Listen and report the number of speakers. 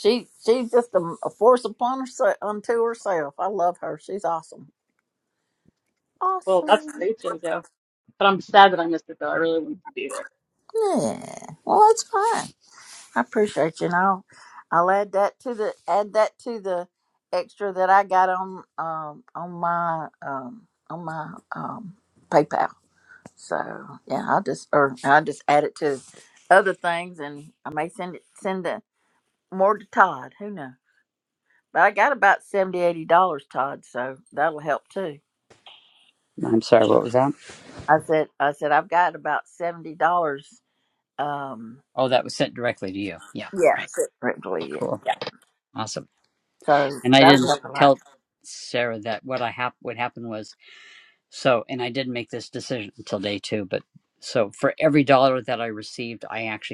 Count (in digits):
3